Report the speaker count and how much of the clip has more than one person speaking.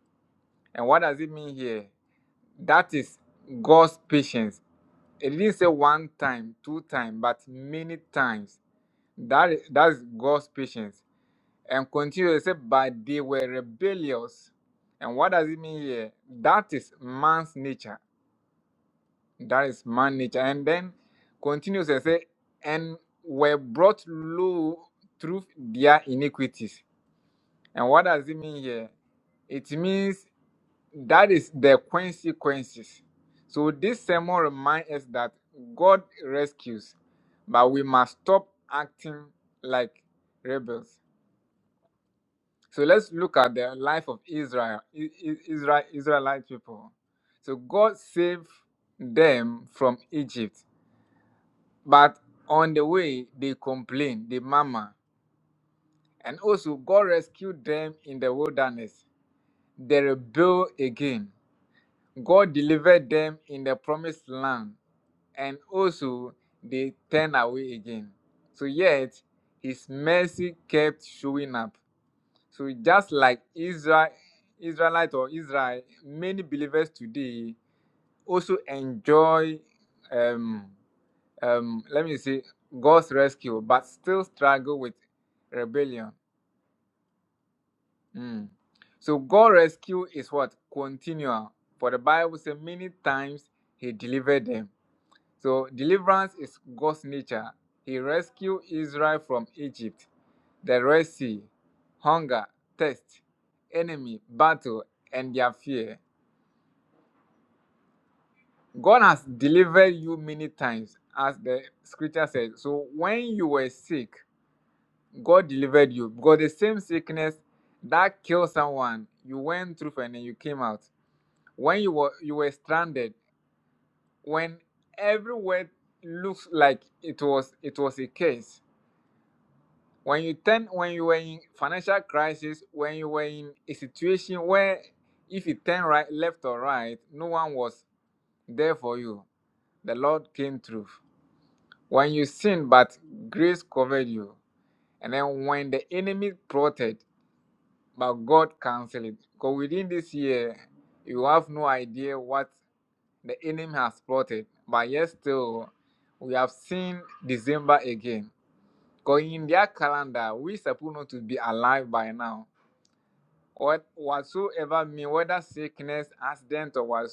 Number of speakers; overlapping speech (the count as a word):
one, no overlap